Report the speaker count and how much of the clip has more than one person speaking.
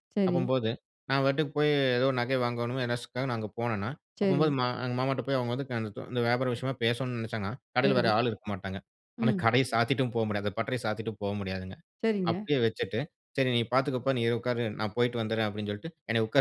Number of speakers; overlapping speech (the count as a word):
two, about 7%